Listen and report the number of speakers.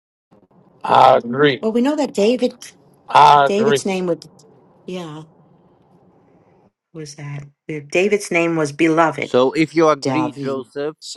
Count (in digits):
3